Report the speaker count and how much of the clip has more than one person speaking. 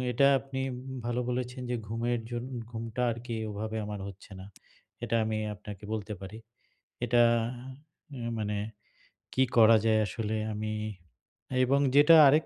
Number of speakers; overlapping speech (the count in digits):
1, no overlap